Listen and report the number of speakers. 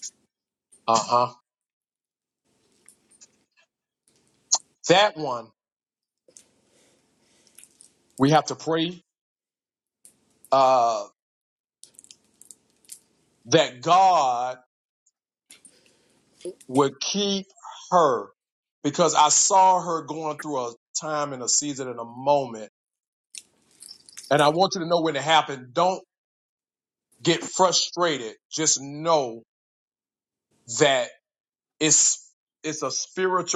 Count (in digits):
1